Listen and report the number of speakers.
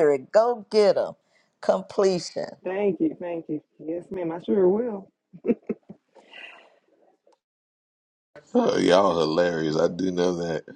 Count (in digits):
3